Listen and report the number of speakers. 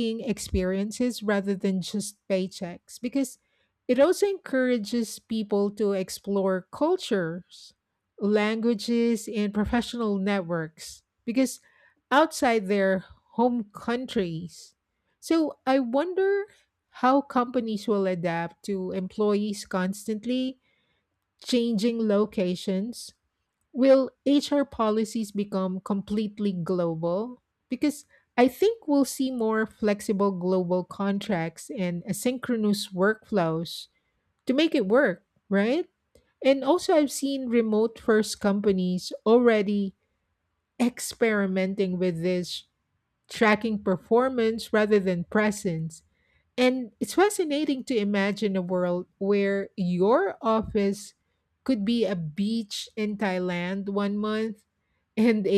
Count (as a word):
one